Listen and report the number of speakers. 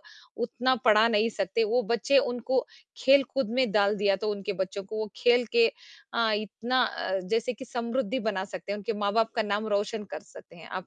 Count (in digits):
1